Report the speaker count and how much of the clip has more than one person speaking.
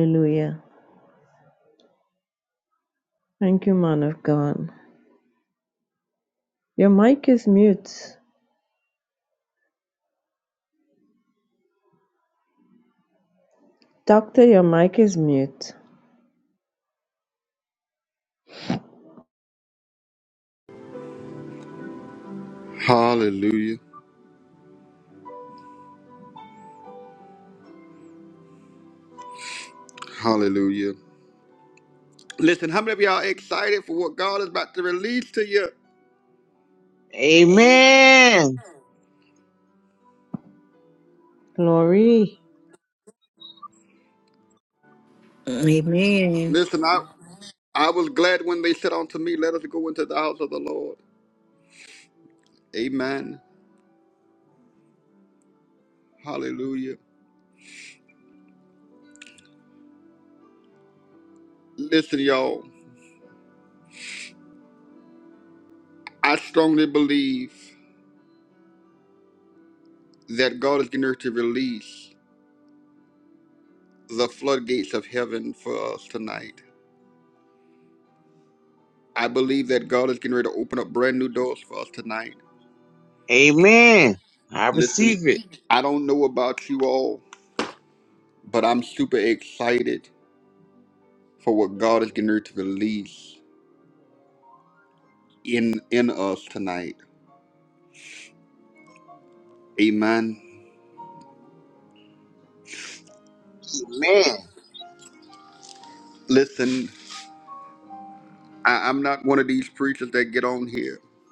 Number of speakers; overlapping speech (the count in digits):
4, under 1%